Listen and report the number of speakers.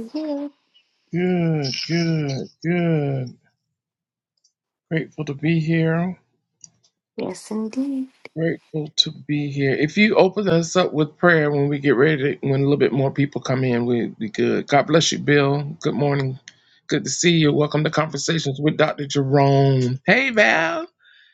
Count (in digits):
2